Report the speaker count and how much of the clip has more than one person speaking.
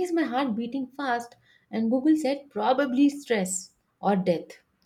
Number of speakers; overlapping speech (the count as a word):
one, no overlap